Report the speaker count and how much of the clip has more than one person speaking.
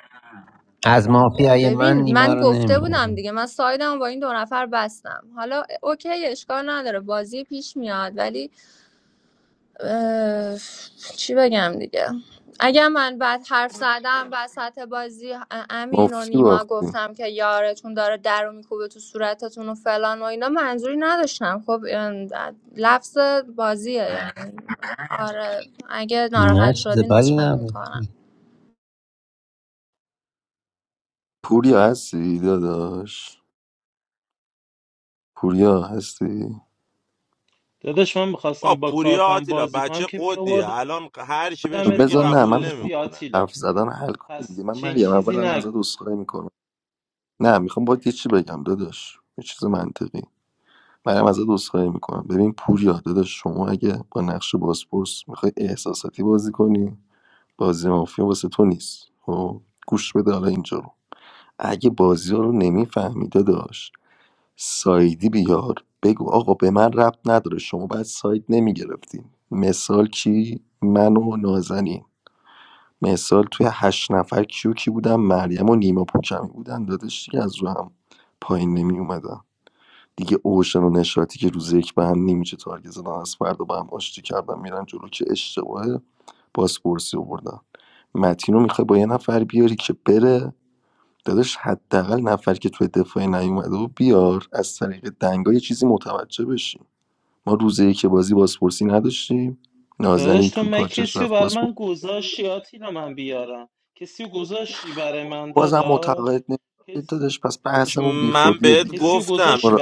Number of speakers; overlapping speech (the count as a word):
five, about 12%